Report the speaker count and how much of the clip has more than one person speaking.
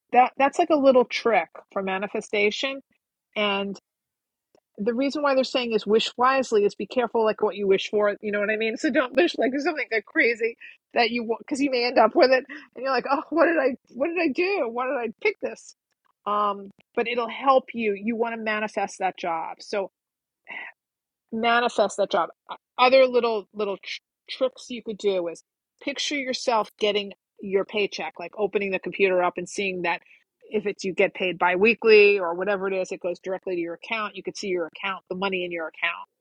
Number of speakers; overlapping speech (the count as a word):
one, no overlap